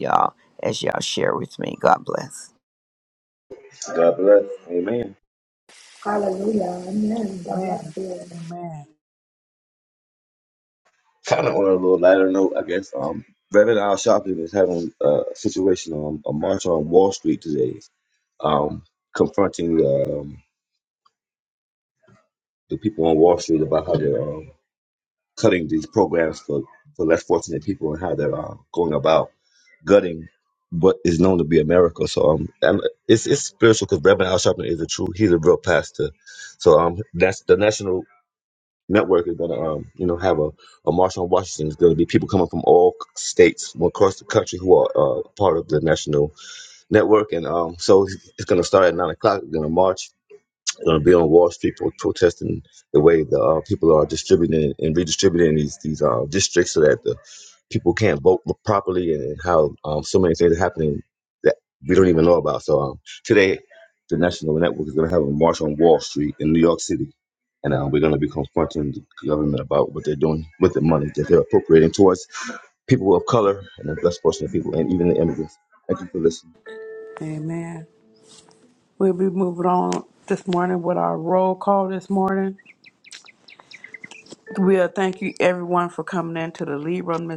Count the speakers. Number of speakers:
4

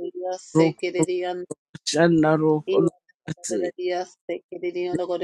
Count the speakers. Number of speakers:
2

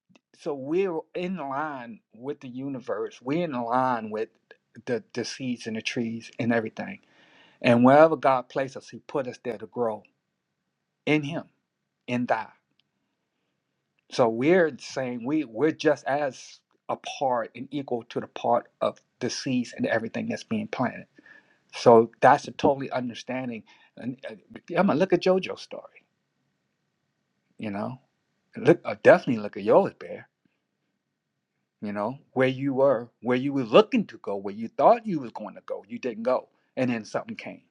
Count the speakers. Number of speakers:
1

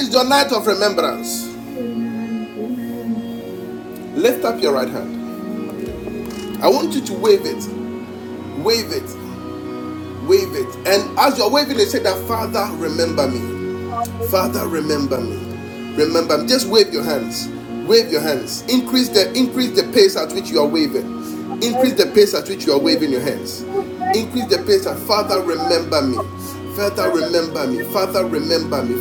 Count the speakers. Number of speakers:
2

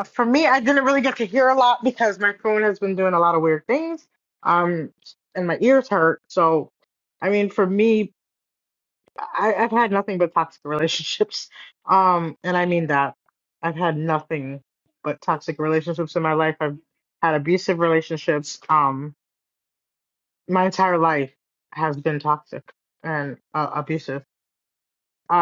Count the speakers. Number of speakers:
1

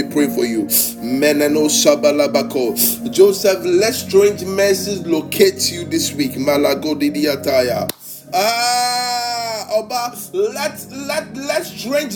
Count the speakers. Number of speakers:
1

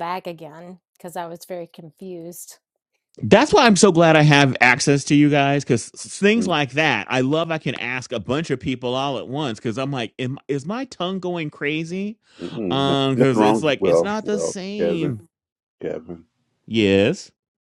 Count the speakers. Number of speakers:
3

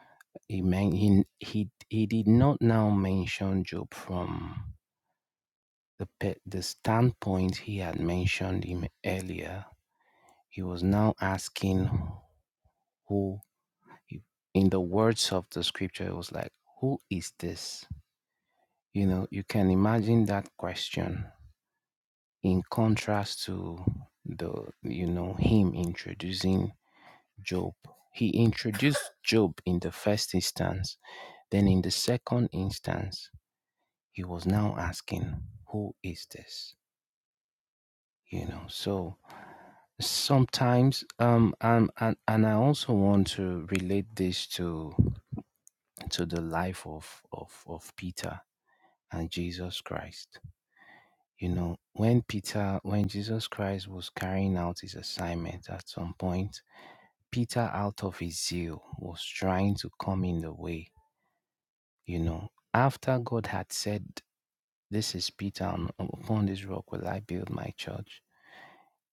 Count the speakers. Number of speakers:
1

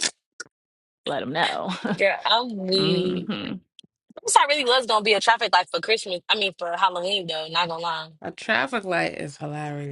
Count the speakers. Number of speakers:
3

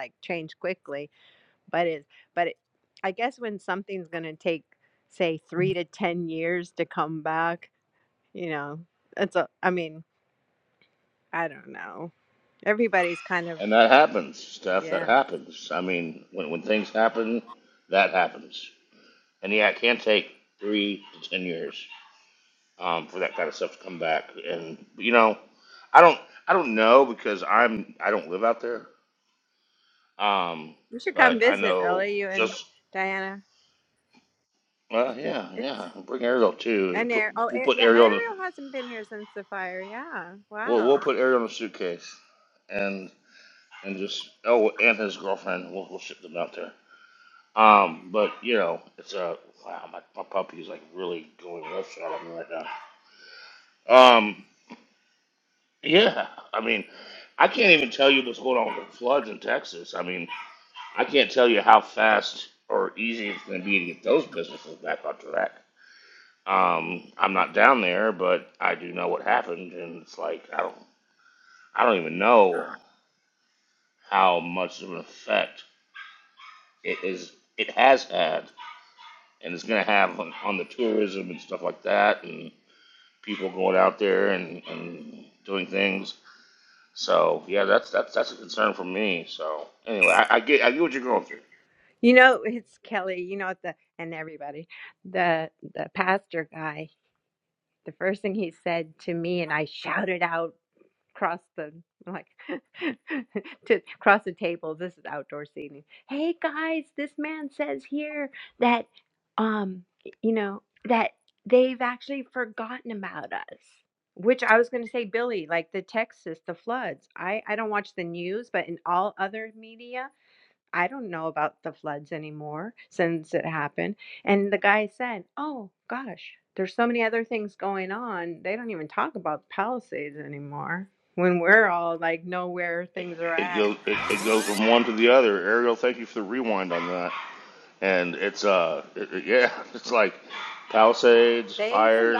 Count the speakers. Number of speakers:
2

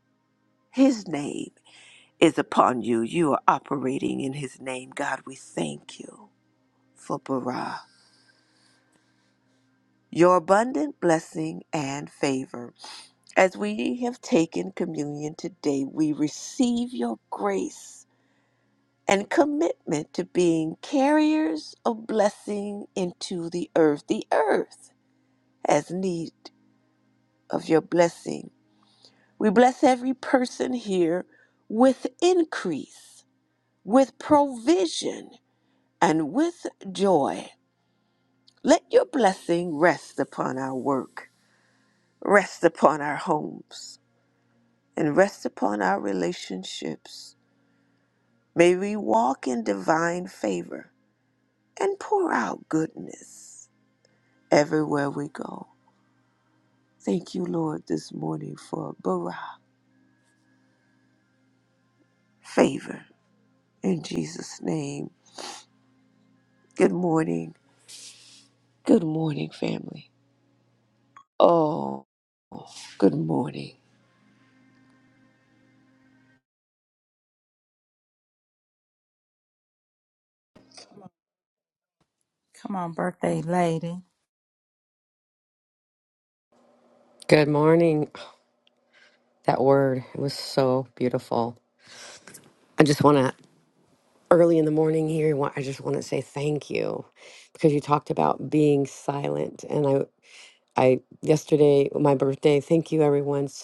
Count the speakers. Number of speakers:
3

